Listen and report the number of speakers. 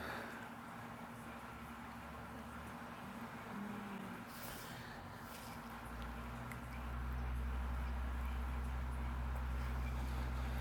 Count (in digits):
0